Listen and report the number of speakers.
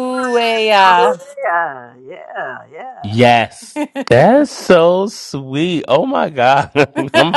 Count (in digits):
3